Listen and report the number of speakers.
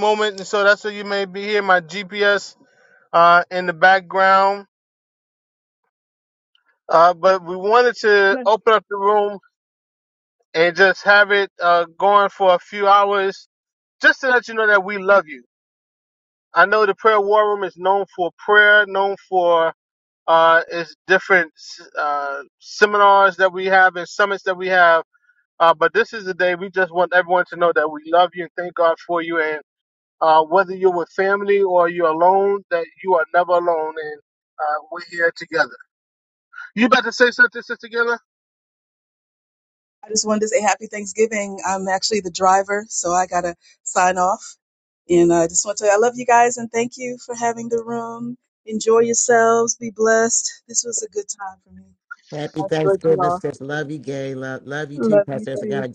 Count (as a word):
three